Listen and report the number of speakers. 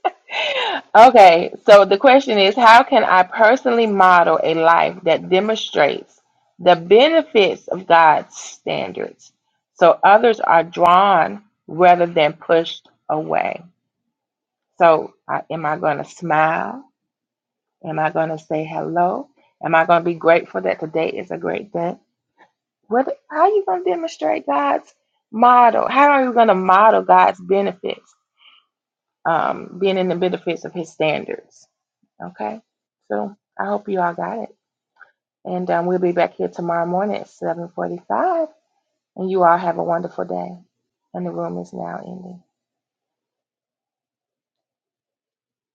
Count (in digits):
1